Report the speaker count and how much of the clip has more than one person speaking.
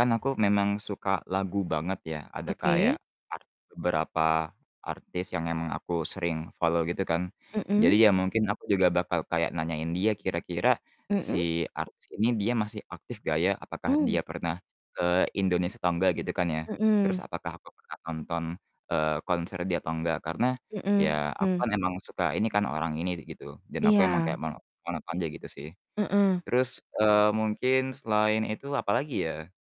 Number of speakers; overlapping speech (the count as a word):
two, about 8%